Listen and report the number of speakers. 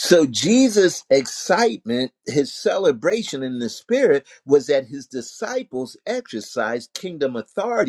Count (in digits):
1